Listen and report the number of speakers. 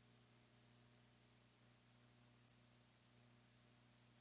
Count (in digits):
0